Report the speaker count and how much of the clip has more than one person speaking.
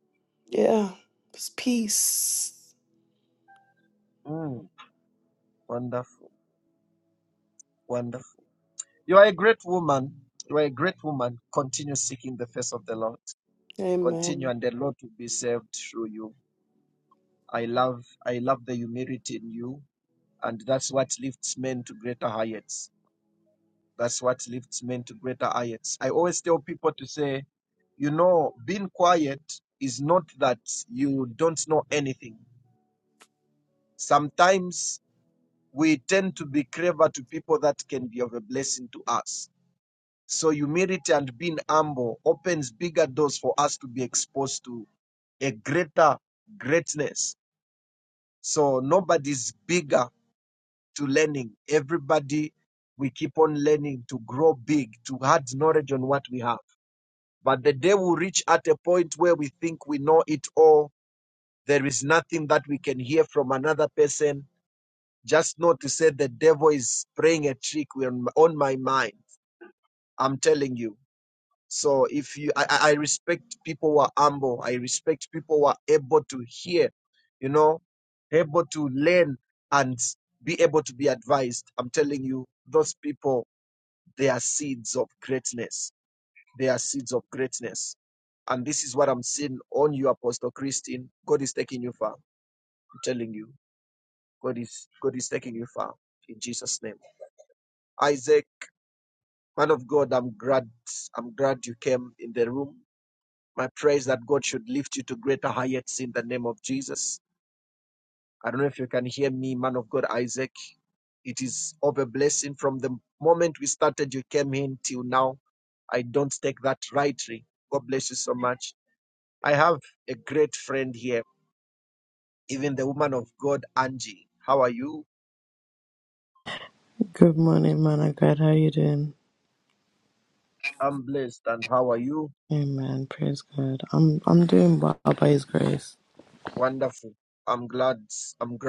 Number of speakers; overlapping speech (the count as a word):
three, under 1%